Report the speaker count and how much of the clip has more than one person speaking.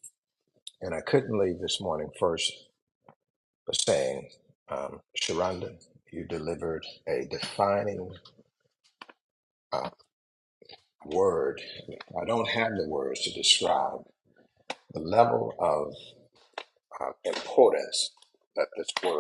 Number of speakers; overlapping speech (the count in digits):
1, no overlap